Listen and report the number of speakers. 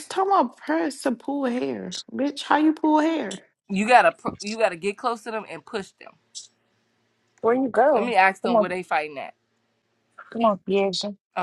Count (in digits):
3